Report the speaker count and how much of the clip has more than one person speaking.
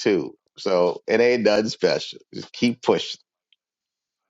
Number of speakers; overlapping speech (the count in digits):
1, no overlap